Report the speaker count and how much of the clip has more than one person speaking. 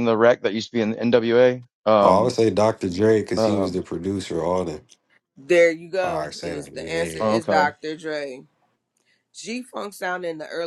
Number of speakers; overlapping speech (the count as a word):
three, about 22%